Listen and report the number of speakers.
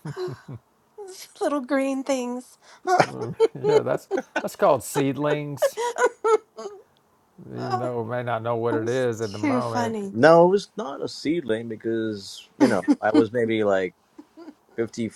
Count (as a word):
three